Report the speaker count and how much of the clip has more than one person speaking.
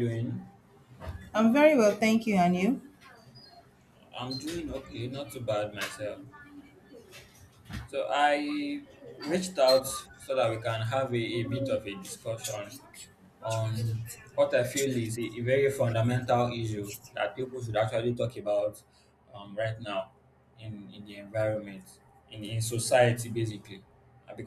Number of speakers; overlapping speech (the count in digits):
2, no overlap